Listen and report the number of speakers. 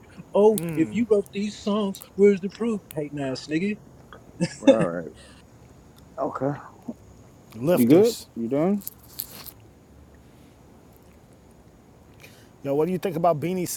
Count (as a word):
three